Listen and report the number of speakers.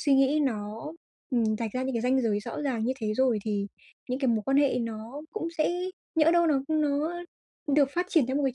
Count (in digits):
1